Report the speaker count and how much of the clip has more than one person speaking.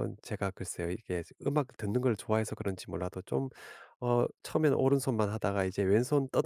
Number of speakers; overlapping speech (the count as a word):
one, no overlap